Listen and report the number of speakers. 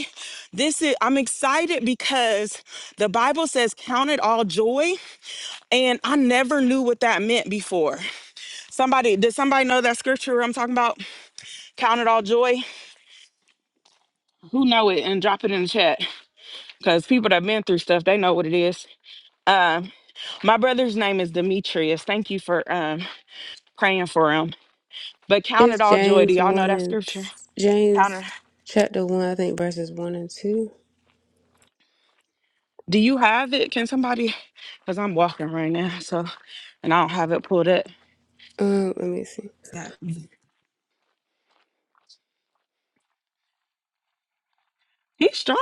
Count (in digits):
2